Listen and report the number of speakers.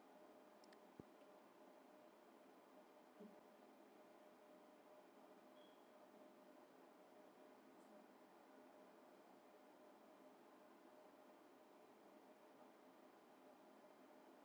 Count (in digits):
0